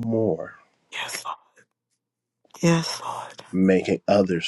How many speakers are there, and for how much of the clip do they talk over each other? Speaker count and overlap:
2, no overlap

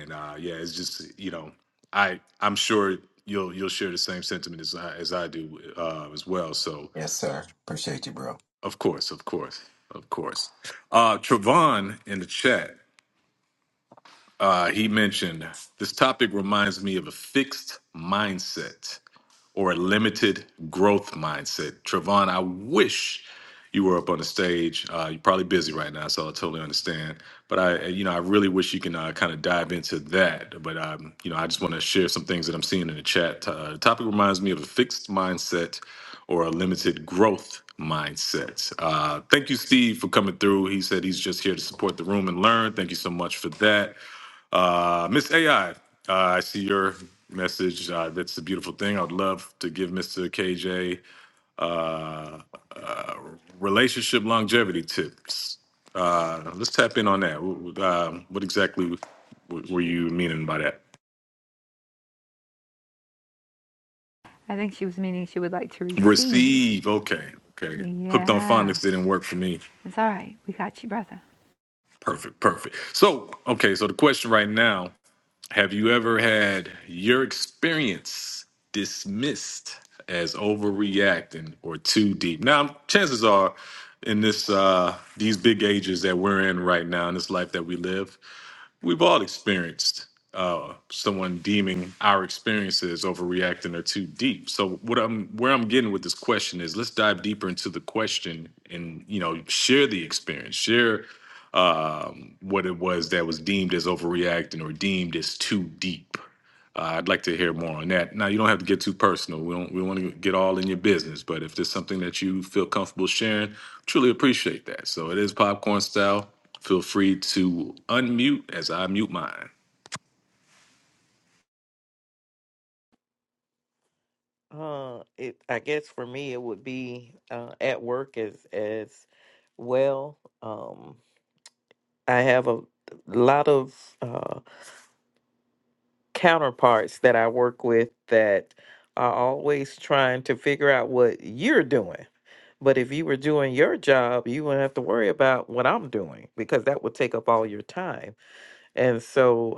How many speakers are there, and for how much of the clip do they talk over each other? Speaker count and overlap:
4, about 1%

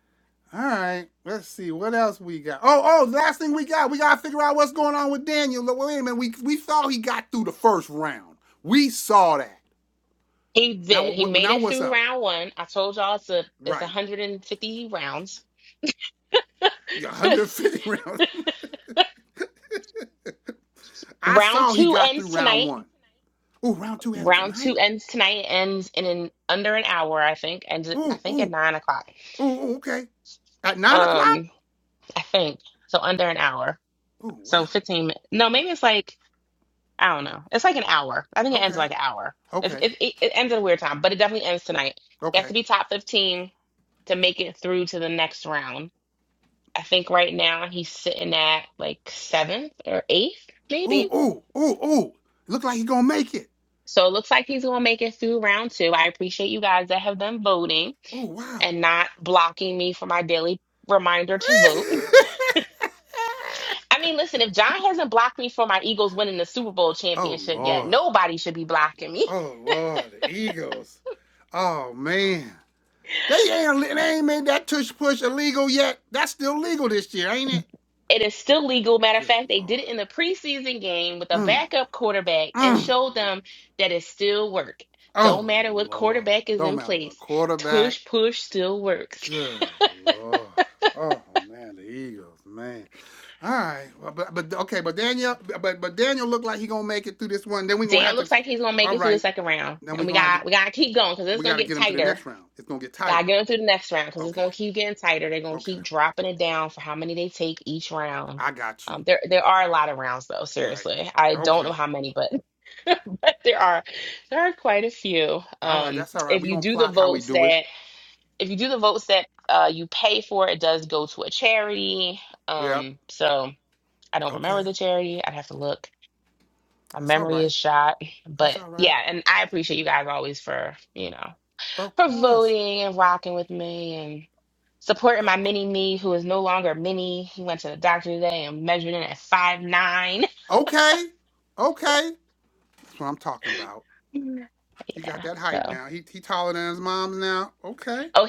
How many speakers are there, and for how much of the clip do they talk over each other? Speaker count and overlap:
2, about 12%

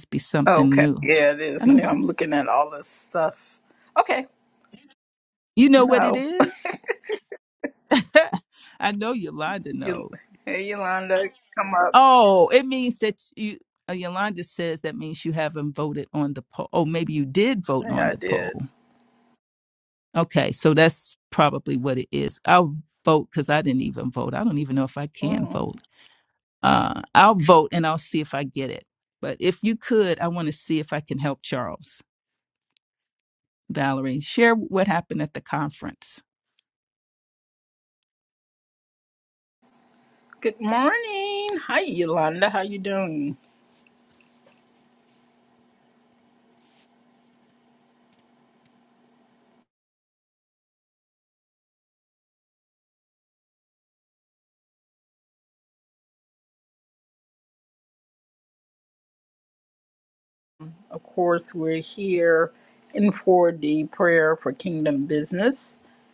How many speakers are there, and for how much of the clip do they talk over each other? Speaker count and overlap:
2, about 4%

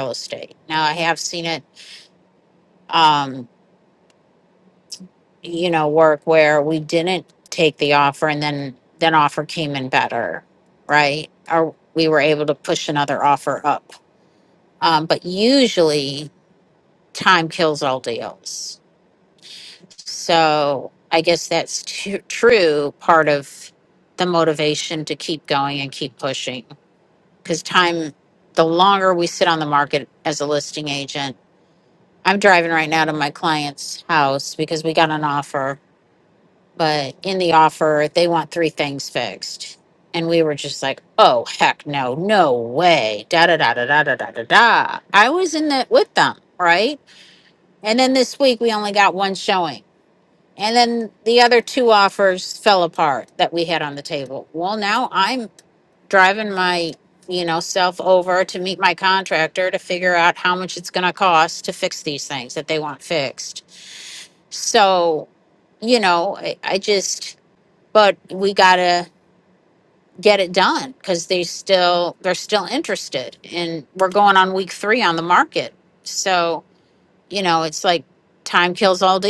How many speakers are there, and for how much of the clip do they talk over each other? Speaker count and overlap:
1, no overlap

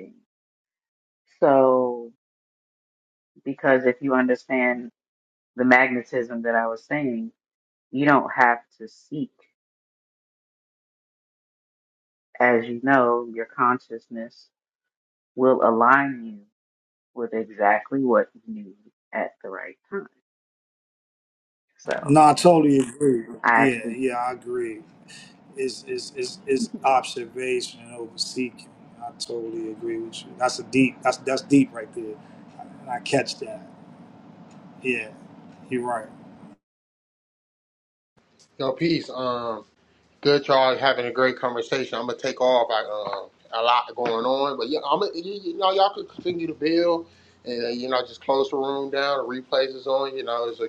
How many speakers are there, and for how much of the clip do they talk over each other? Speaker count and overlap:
3, about 1%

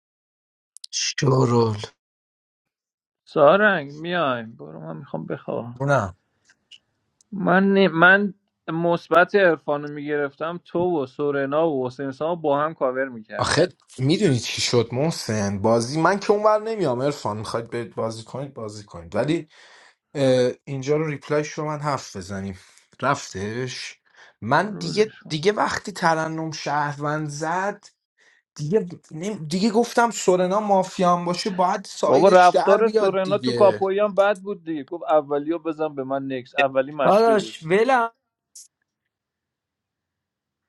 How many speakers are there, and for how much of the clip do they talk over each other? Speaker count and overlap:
3, about 7%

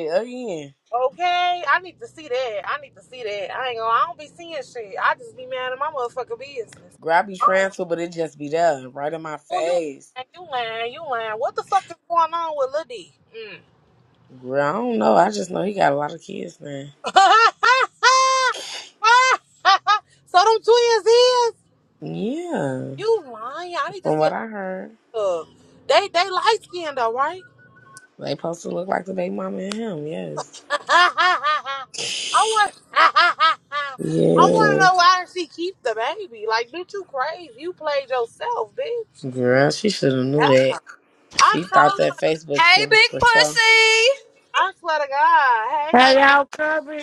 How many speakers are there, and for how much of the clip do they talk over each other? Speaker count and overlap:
4, about 7%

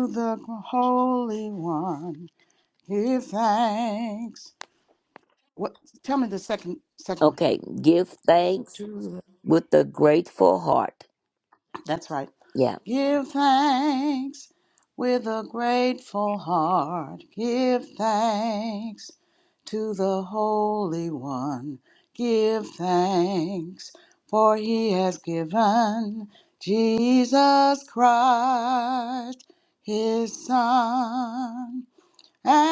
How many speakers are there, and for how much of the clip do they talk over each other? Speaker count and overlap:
2, under 1%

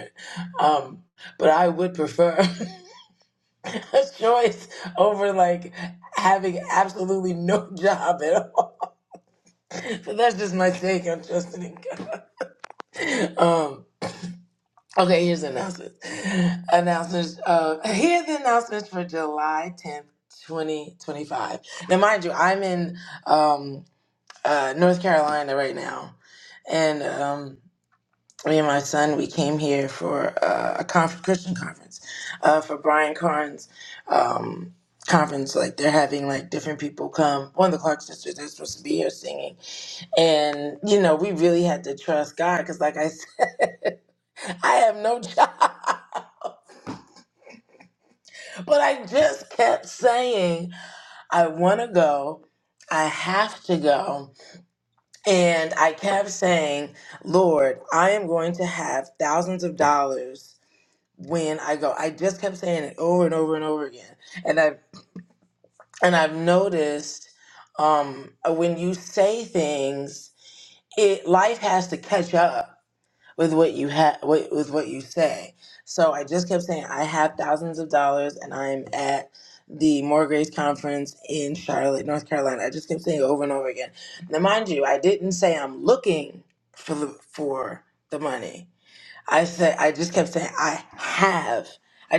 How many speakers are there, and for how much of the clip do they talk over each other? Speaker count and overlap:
1, no overlap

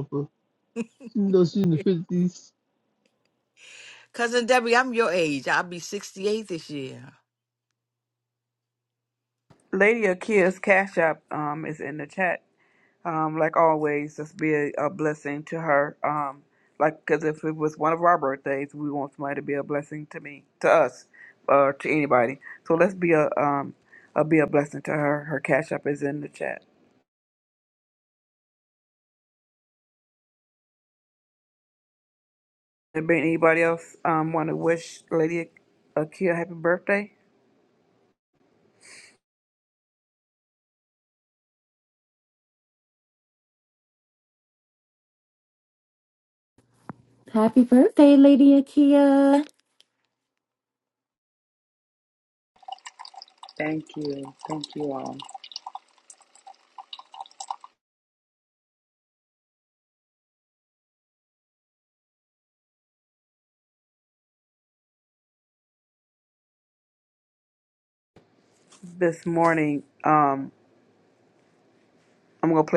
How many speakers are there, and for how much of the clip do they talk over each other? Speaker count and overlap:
5, no overlap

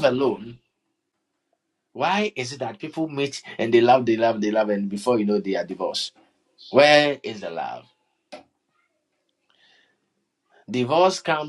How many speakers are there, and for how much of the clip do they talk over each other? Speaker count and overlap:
1, no overlap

